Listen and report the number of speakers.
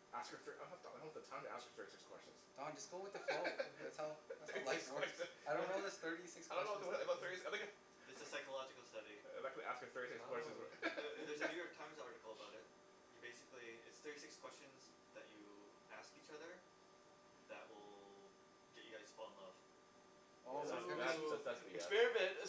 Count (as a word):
four